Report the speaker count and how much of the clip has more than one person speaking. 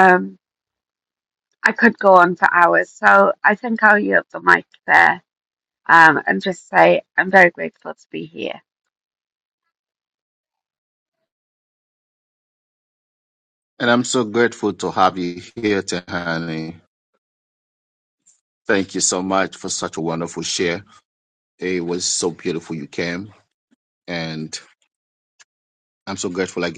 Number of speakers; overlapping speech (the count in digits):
2, no overlap